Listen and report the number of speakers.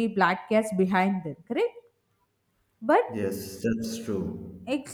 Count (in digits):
2